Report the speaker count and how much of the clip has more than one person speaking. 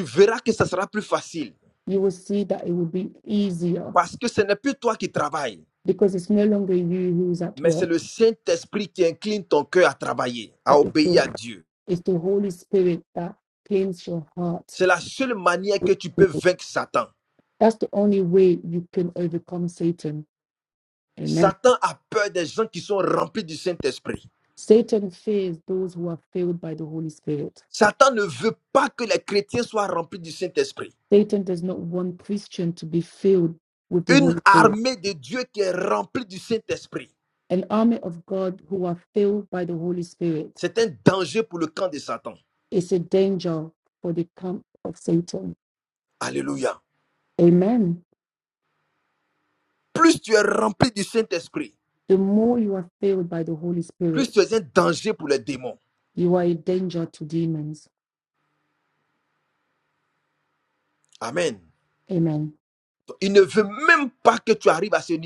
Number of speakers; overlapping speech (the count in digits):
2, about 3%